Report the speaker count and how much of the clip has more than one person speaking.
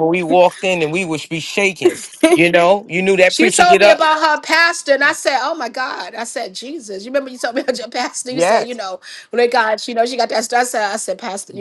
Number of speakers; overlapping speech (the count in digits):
2, about 9%